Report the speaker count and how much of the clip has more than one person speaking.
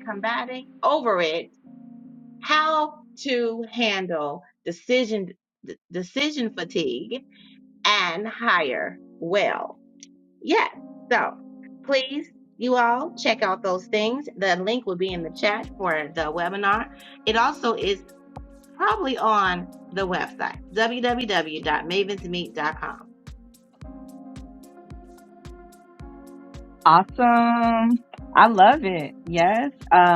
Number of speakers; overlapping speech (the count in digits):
2, no overlap